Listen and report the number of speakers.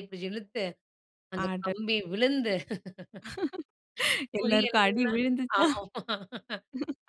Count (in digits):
2